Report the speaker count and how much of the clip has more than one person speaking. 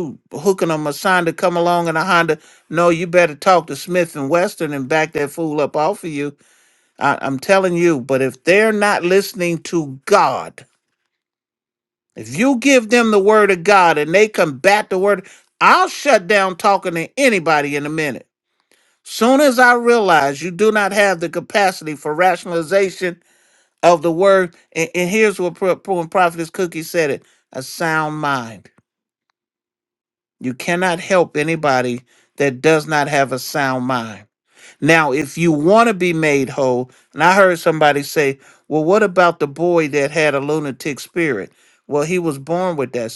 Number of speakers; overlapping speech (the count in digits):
1, no overlap